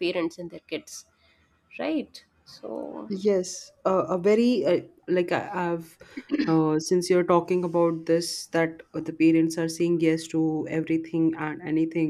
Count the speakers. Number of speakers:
two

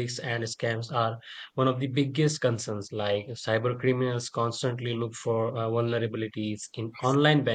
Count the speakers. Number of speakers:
one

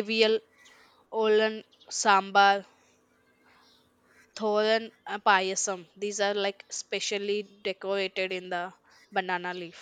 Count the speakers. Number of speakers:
one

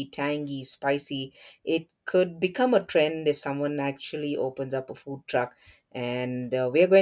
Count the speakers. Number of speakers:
one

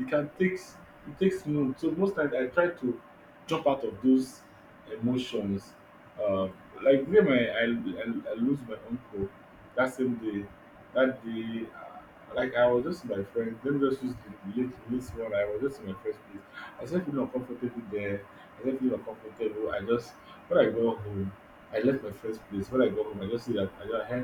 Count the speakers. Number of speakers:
one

